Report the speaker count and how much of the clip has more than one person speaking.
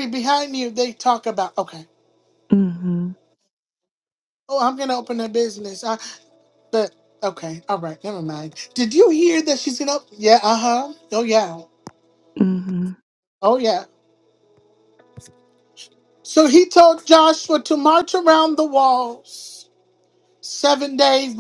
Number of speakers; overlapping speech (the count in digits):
2, no overlap